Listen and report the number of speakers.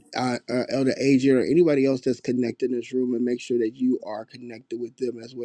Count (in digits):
1